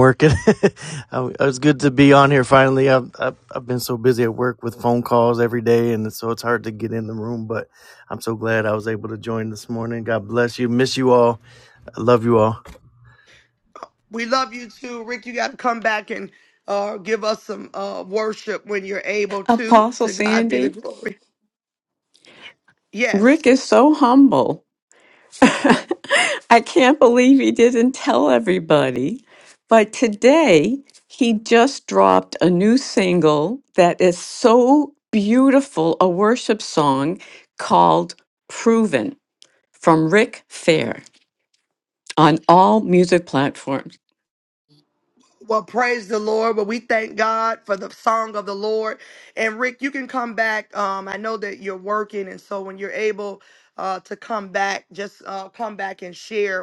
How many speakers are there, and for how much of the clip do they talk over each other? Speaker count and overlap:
3, about 2%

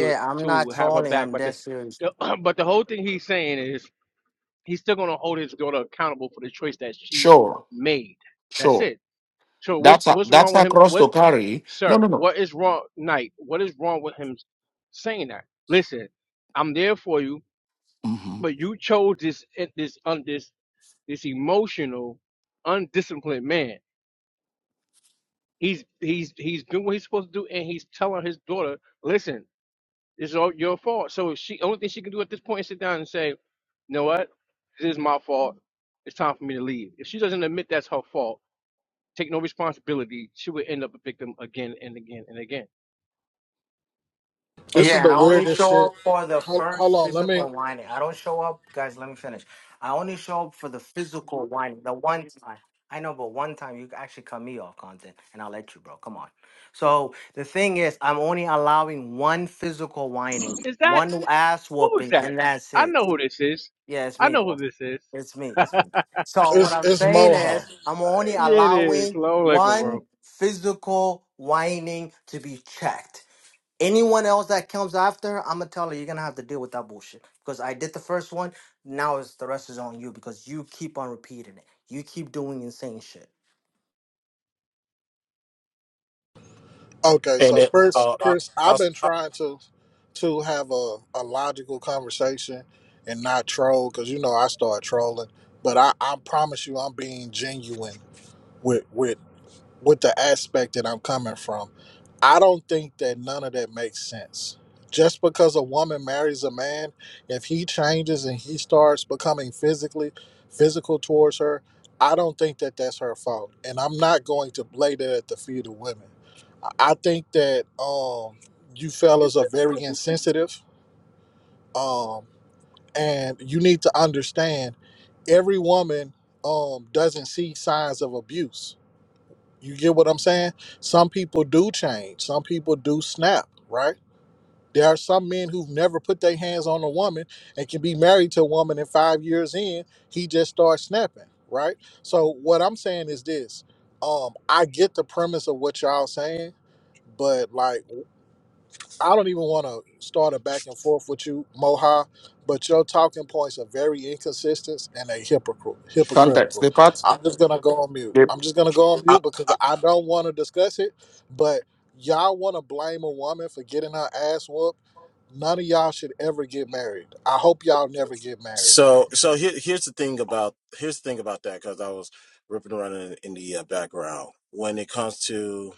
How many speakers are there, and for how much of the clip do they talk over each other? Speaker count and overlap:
5, about 7%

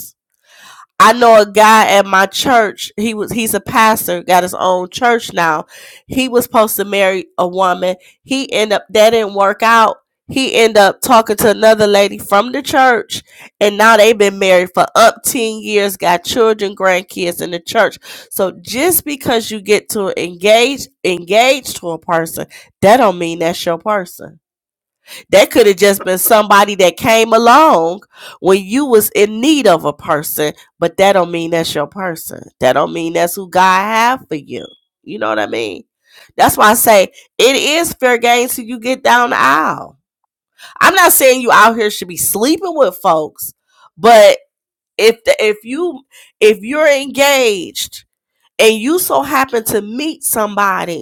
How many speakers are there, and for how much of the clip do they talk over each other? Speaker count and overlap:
1, no overlap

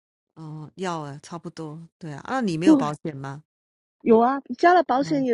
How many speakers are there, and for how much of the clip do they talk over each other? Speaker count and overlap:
2, about 6%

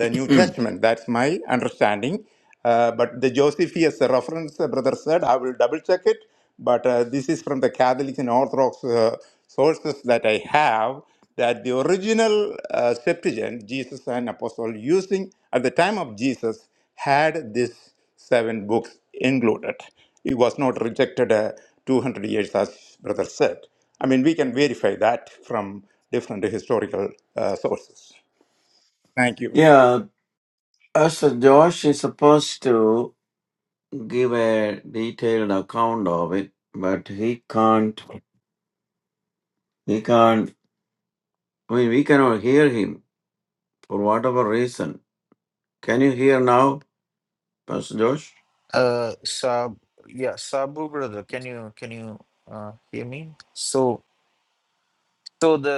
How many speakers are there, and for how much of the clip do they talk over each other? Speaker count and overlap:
3, under 1%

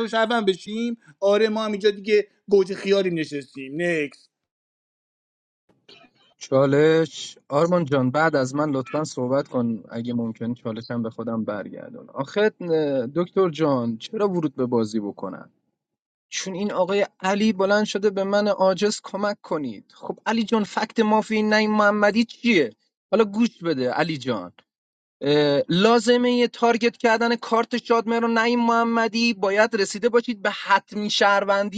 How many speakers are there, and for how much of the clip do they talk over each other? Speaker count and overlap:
2, no overlap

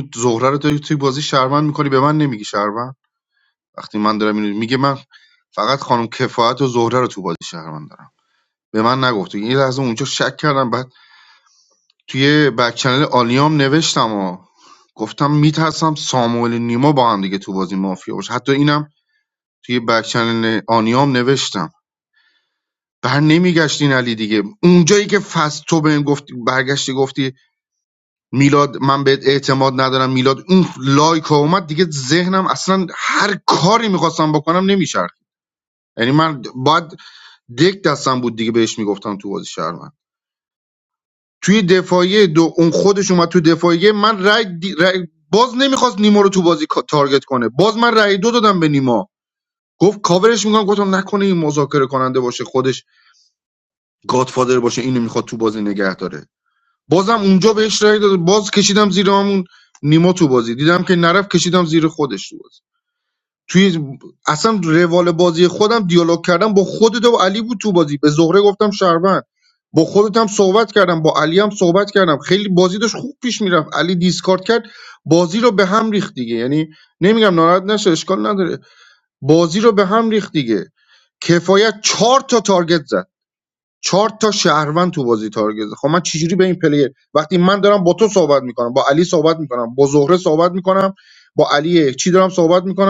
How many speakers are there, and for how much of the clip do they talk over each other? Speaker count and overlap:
1, no overlap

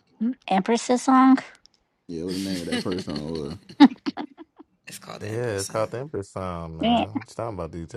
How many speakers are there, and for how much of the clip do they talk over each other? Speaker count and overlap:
3, about 3%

